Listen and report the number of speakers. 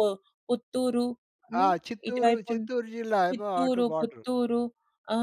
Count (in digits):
2